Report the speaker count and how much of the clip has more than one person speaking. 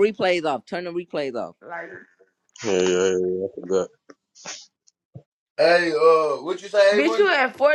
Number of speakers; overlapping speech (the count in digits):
4, about 5%